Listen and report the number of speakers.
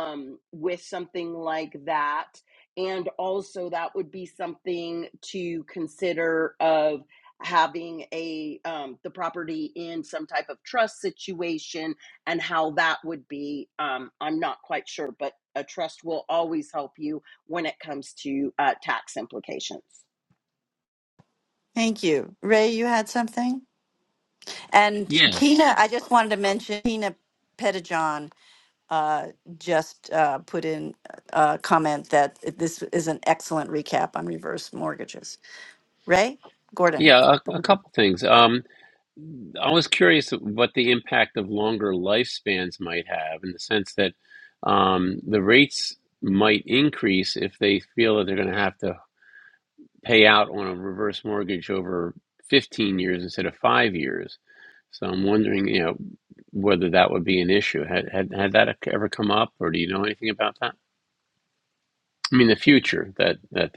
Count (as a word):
three